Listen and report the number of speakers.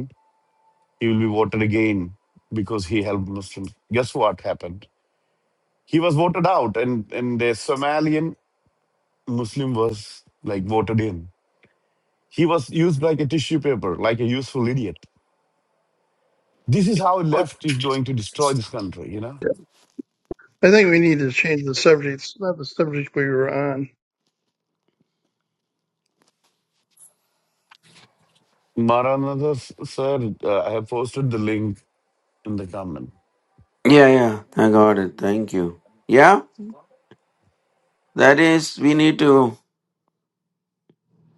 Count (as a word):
three